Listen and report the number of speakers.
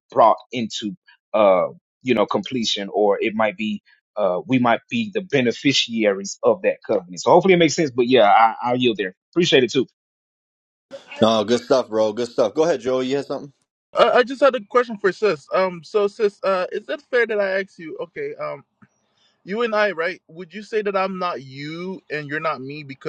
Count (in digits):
3